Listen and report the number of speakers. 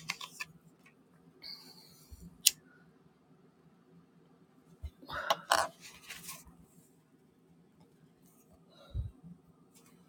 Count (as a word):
zero